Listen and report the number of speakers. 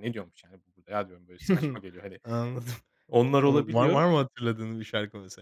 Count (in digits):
2